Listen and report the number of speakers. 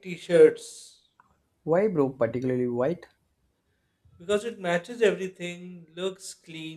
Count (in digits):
2